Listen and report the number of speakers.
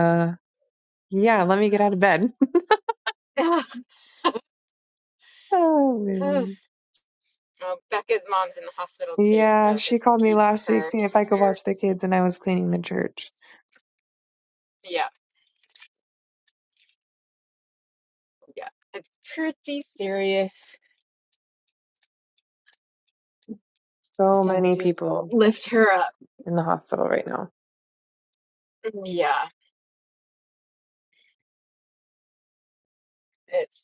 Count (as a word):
two